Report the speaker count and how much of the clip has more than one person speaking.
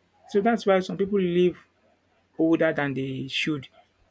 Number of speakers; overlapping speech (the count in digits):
1, no overlap